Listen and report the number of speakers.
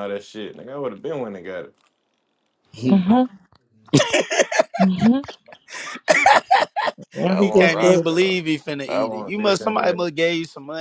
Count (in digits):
3